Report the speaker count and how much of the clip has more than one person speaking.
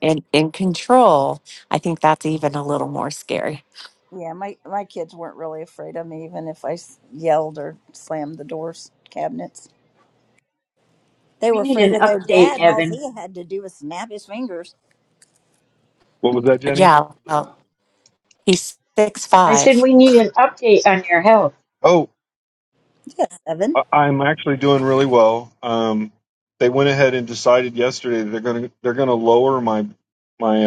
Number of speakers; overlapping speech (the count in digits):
4, about 7%